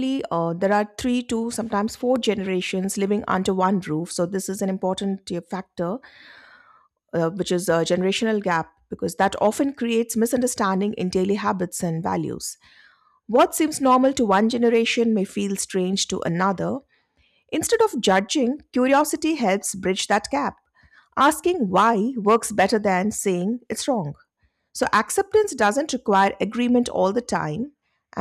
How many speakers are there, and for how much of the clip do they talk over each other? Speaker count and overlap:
1, no overlap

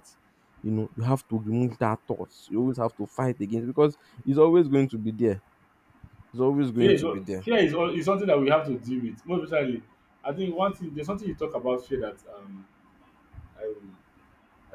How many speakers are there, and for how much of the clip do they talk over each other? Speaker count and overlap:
2, about 4%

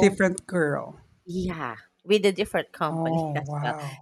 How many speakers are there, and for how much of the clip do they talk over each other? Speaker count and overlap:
2, about 25%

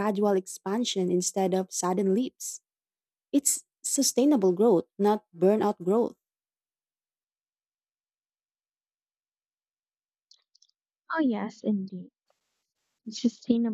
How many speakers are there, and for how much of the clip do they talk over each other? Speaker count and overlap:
2, no overlap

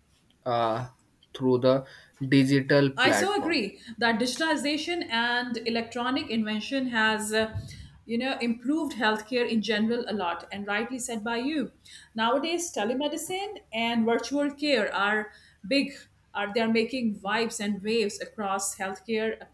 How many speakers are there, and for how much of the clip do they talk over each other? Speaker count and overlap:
2, about 3%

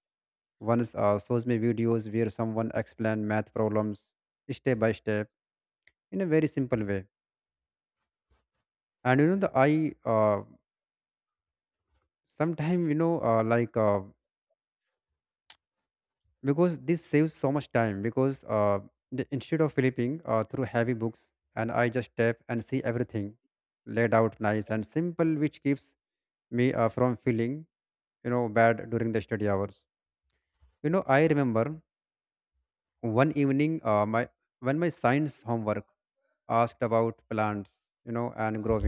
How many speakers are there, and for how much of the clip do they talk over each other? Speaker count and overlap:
1, no overlap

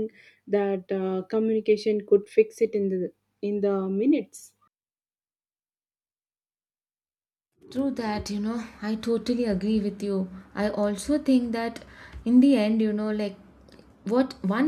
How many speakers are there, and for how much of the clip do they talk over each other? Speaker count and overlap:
2, no overlap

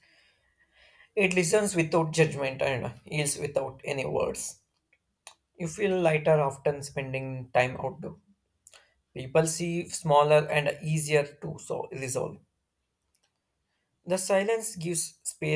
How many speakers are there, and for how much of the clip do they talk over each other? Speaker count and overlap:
1, no overlap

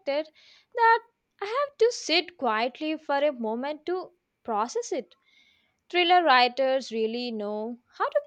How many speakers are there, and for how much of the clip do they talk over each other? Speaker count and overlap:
1, no overlap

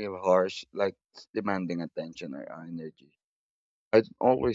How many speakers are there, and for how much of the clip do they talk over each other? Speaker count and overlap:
1, no overlap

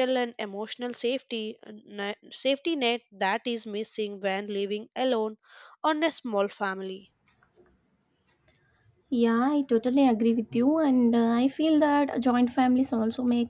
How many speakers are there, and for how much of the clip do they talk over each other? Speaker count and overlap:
2, no overlap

